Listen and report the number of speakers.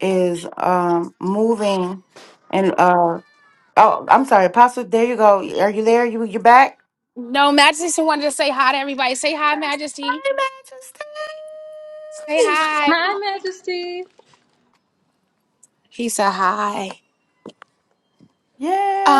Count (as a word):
three